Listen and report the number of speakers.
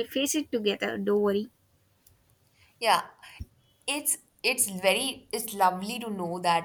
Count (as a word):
two